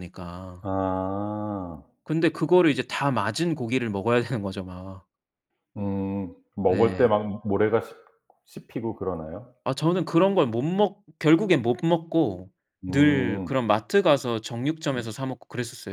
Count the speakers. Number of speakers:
2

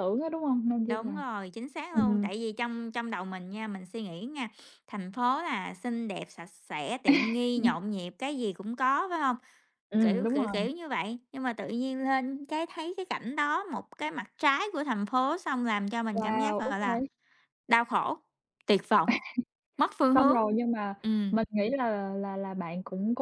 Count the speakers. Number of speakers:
2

